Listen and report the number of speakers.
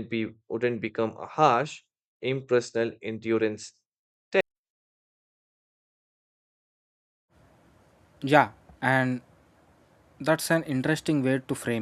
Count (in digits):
2